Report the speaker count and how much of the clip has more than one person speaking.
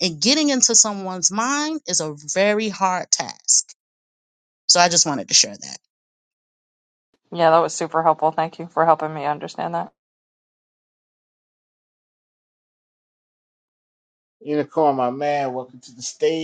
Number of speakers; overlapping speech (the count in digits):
3, no overlap